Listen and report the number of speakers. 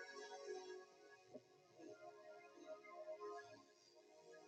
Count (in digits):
0